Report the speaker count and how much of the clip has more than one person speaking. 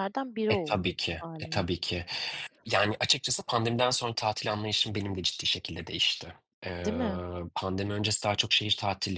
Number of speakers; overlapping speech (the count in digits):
2, about 14%